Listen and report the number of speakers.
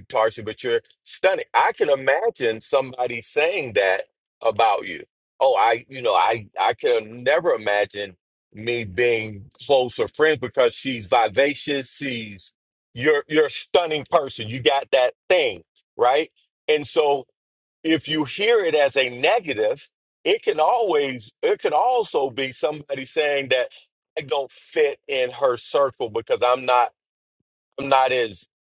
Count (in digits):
1